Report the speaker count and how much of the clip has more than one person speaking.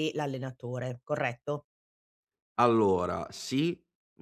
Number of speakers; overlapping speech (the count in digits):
2, no overlap